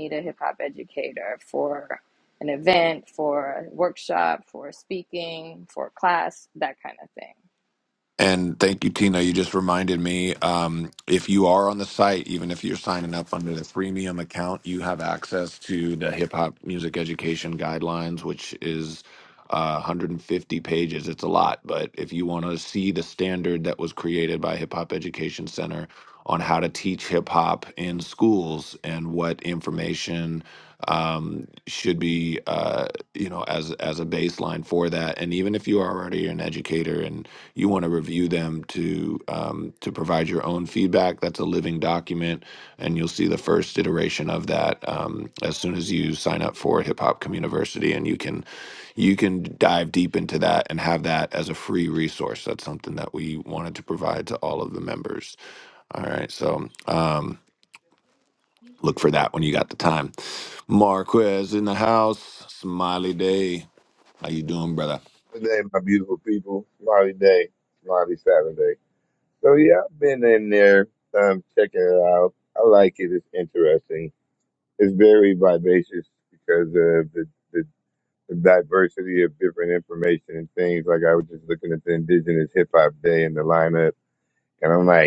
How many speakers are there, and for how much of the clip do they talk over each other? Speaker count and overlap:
three, no overlap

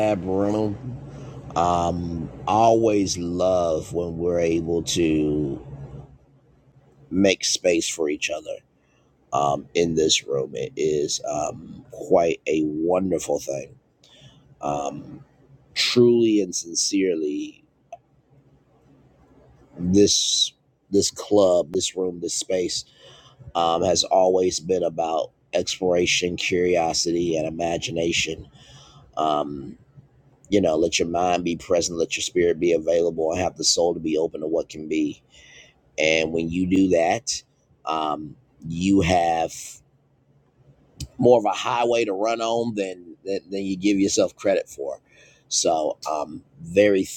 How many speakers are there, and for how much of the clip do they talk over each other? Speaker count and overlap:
one, no overlap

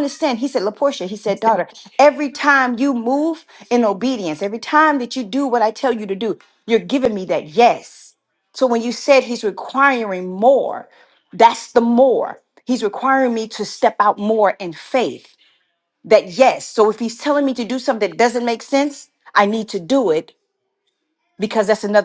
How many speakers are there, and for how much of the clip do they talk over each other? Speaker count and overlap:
one, no overlap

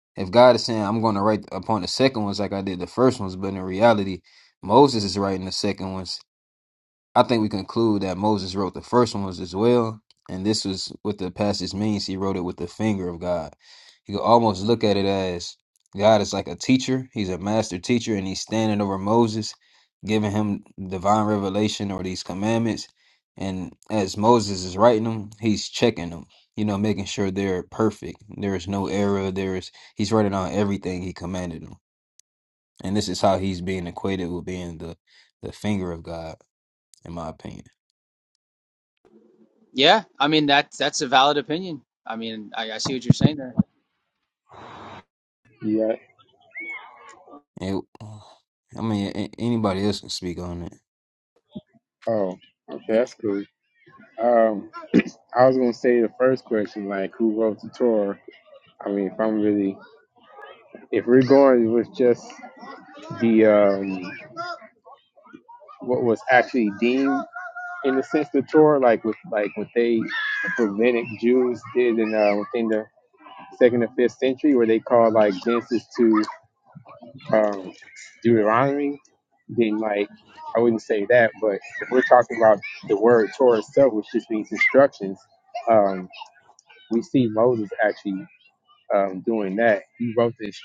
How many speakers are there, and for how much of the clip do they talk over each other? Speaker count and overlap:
three, no overlap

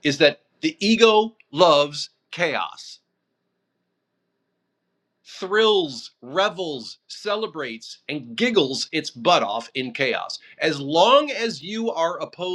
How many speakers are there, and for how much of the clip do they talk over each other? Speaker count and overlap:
one, no overlap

